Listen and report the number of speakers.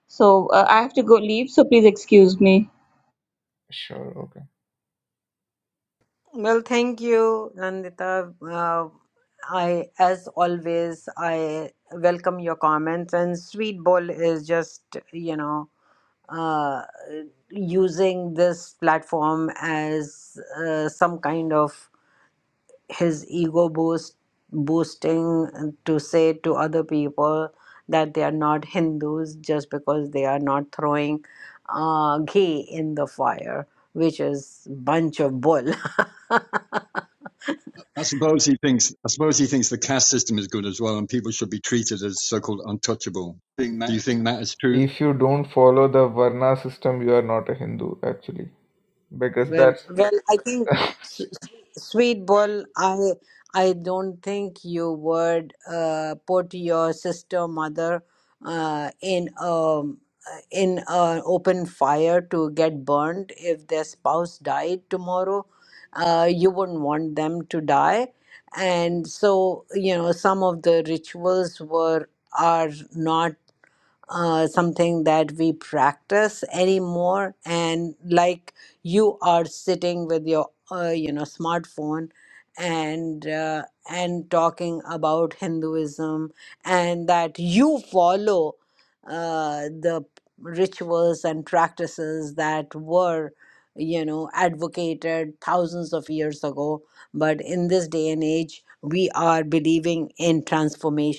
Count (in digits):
4